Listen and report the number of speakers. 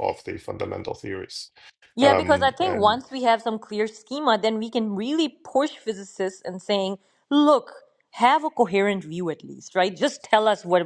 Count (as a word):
two